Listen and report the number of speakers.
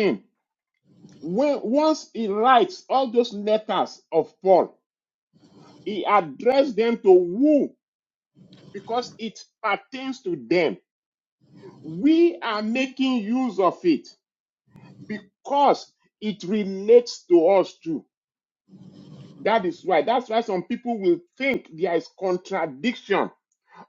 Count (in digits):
1